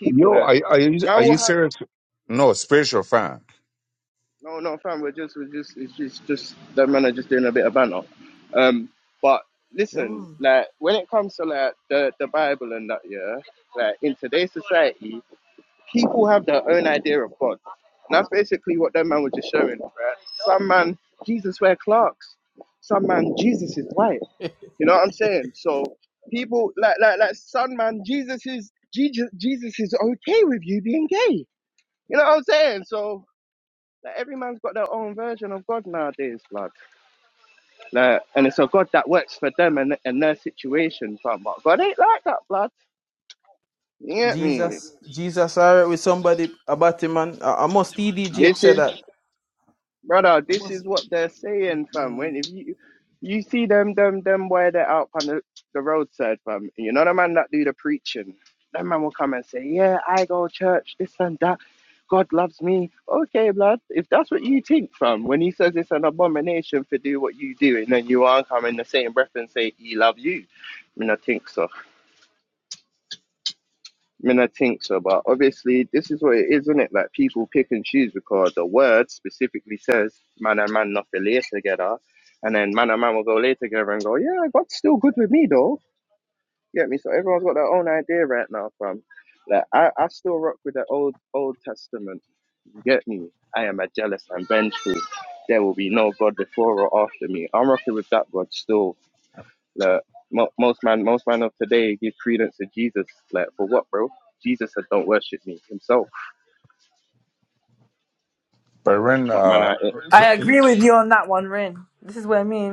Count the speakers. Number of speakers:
four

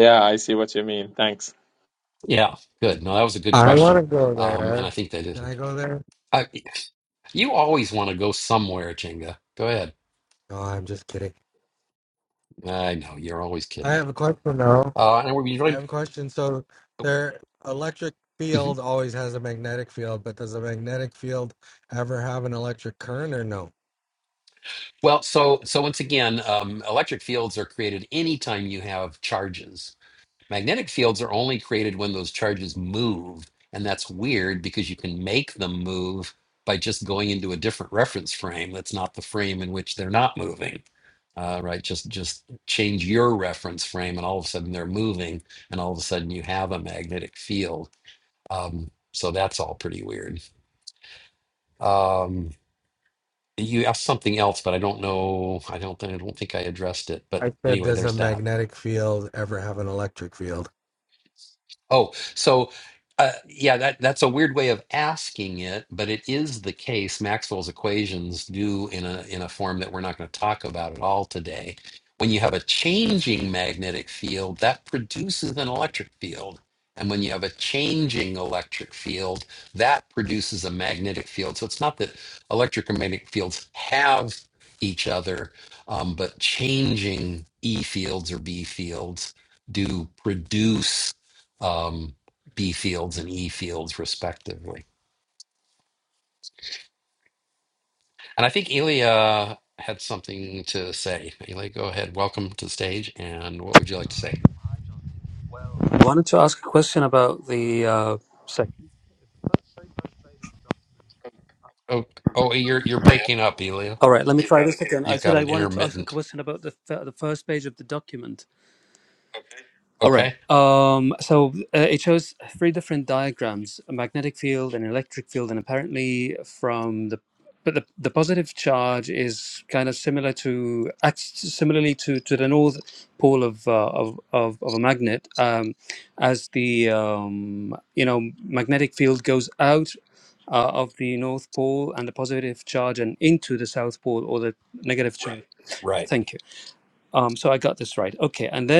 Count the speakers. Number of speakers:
four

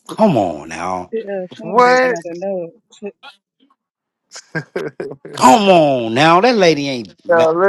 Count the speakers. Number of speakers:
three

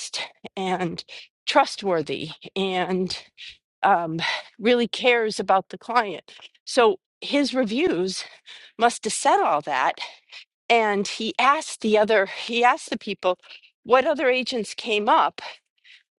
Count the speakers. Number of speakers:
one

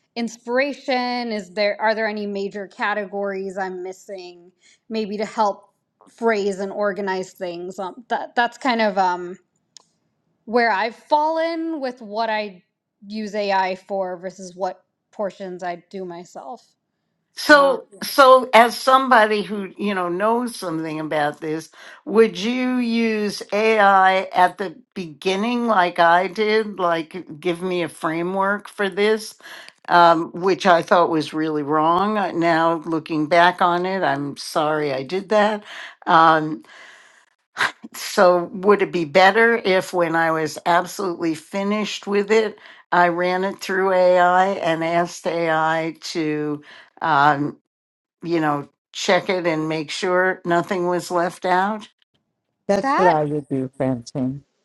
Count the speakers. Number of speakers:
three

